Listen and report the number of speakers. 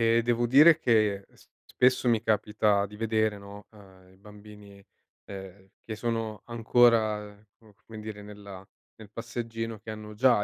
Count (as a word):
one